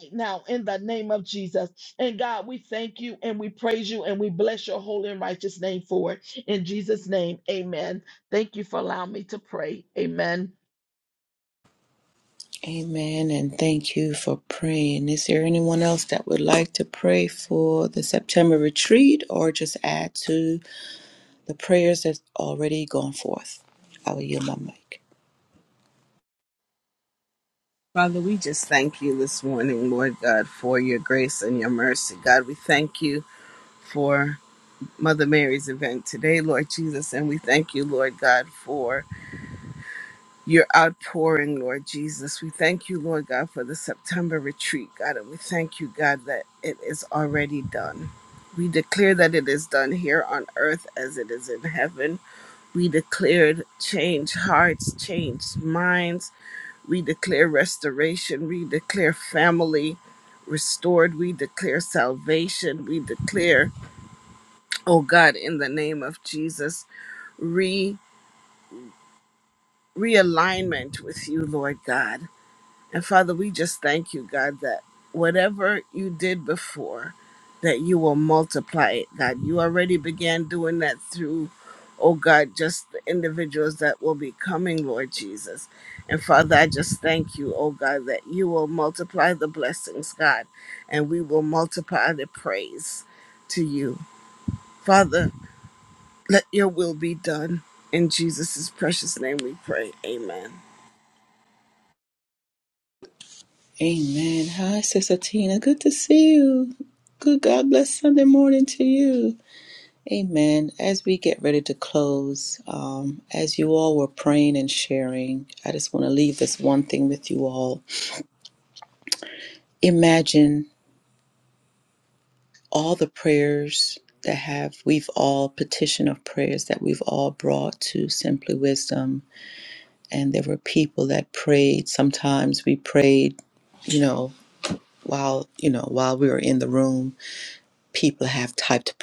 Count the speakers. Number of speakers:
3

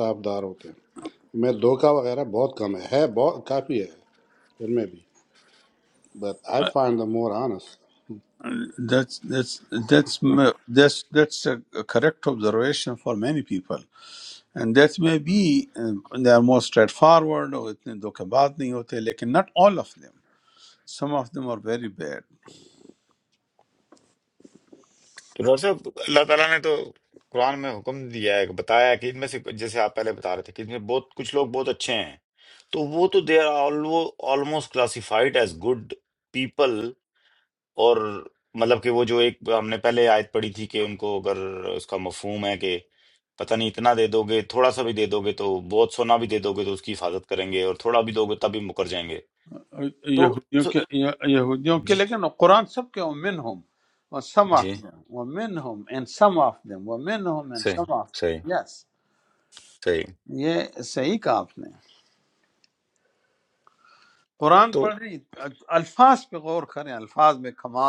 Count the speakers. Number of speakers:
3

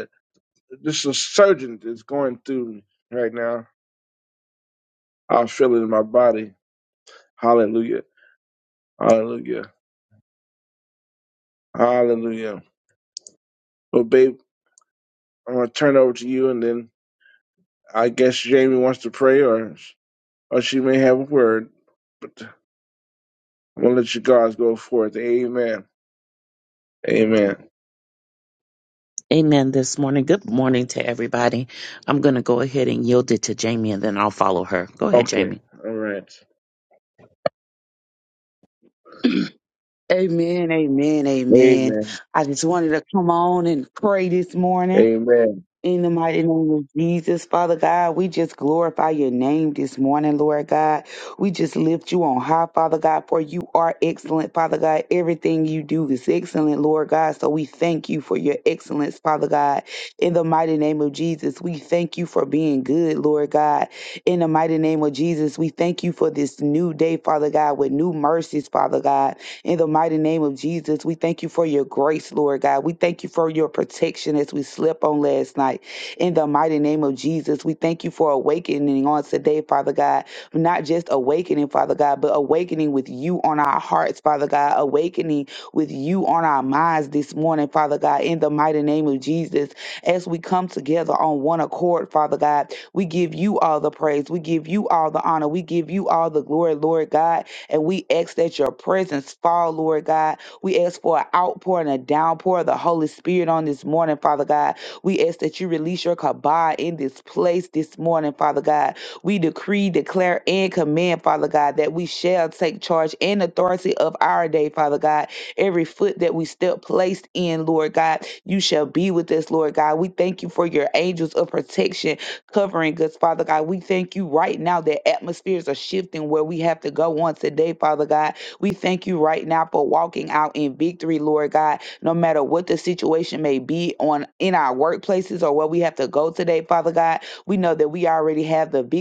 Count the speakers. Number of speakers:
3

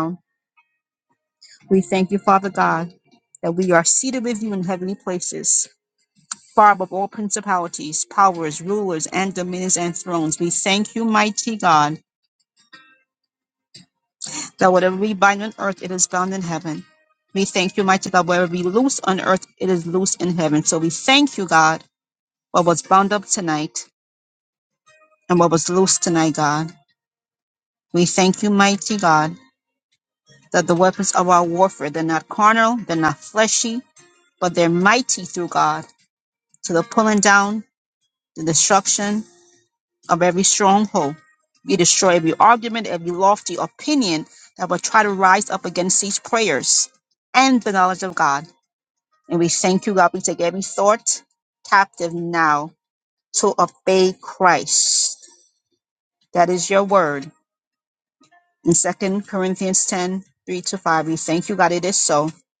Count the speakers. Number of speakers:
1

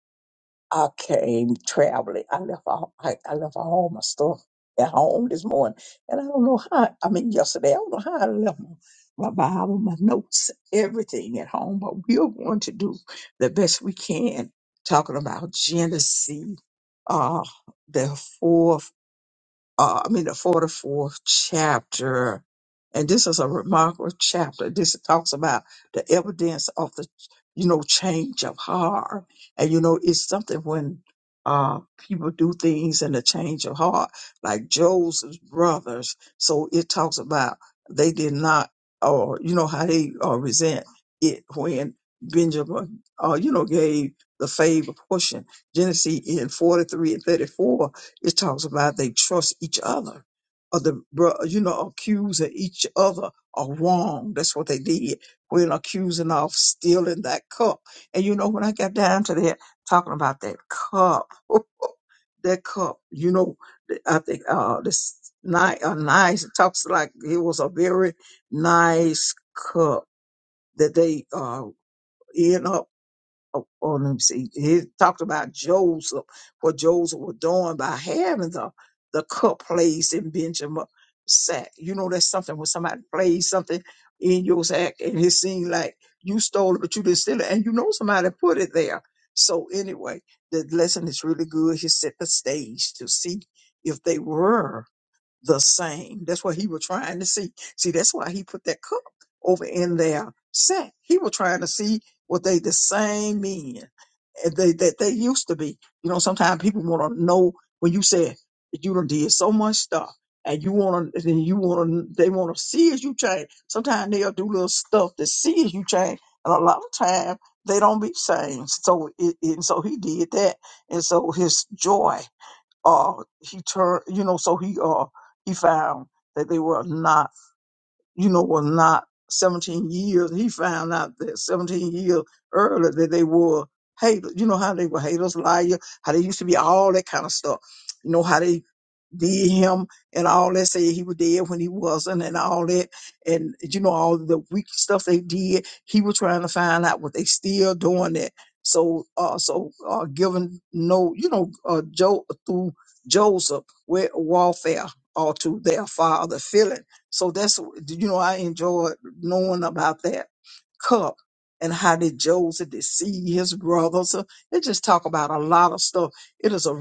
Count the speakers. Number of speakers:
1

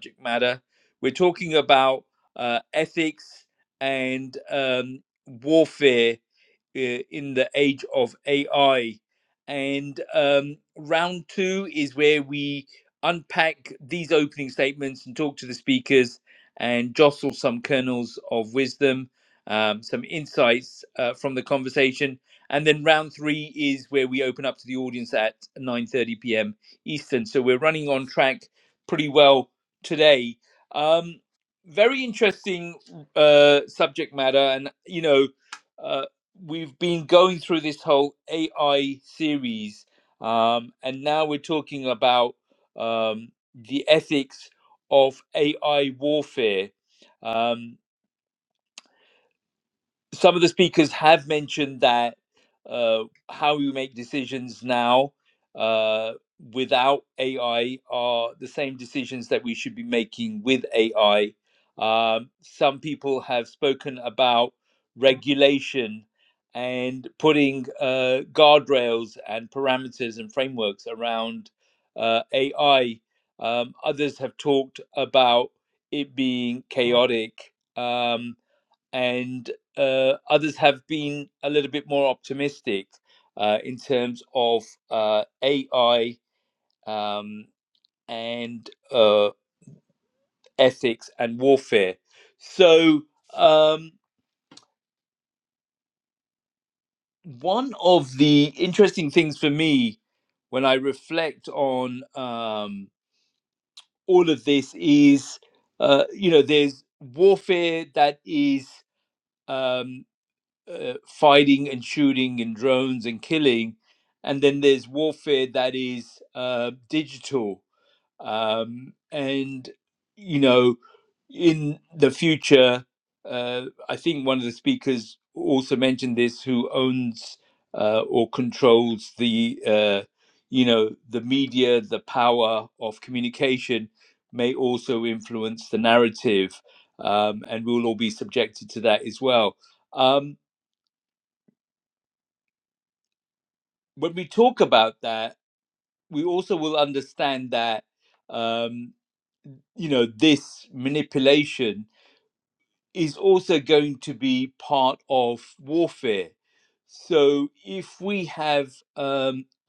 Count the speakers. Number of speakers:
1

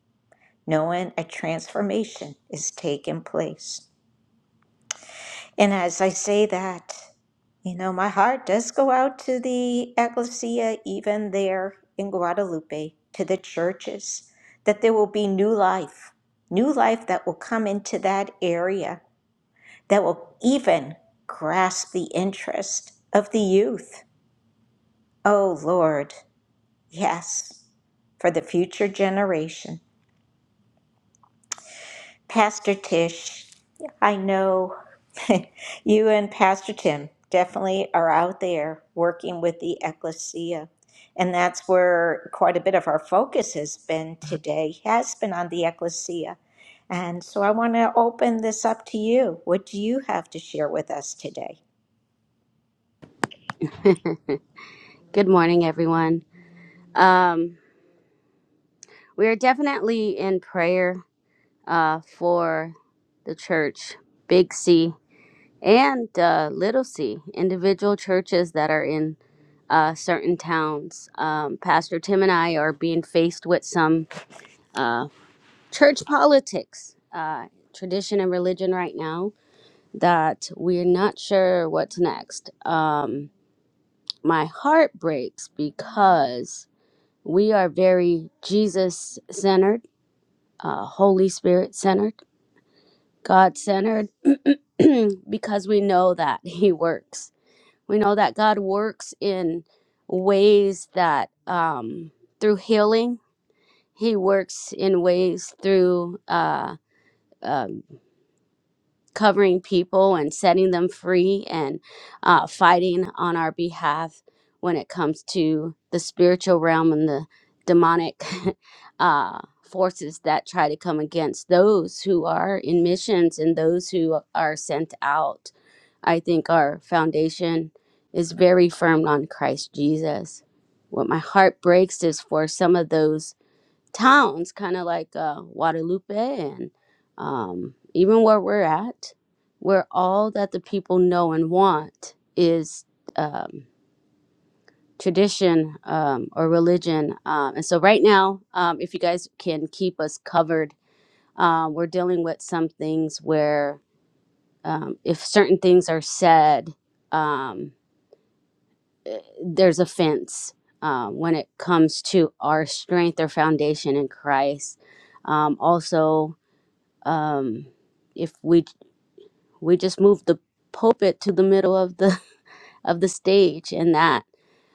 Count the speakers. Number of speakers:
2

